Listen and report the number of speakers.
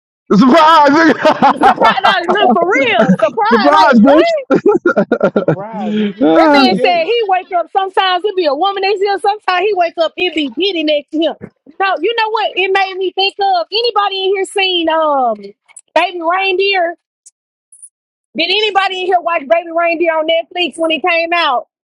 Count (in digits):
3